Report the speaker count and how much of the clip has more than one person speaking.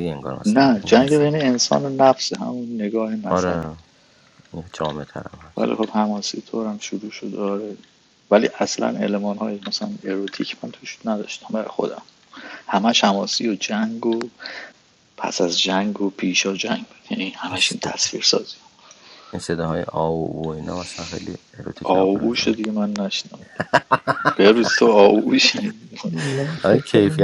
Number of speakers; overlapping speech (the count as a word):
three, about 12%